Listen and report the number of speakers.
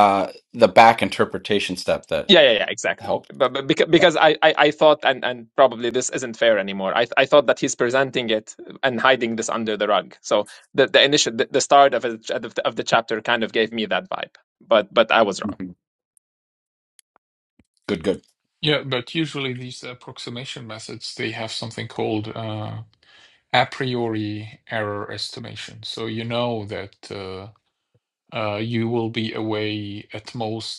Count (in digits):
3